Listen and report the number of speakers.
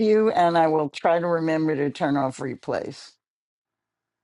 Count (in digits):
1